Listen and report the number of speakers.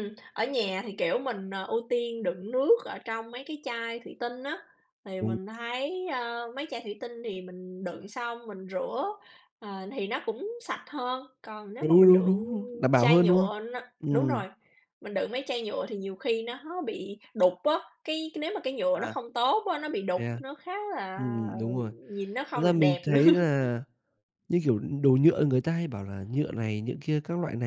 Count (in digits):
2